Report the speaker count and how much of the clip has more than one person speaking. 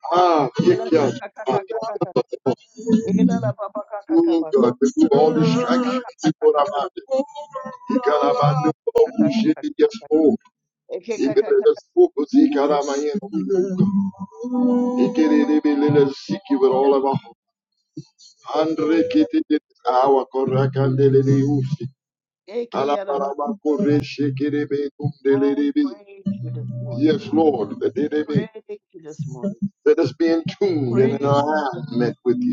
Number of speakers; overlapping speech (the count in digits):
2, about 21%